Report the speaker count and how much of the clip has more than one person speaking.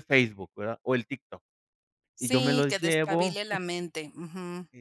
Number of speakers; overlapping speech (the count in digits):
2, about 22%